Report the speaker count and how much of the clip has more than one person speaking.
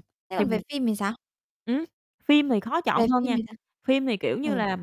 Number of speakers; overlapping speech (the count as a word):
two, about 14%